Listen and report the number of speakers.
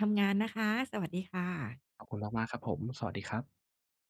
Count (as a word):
two